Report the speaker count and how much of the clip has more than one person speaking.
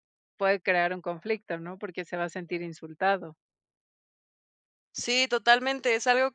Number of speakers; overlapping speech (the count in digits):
2, no overlap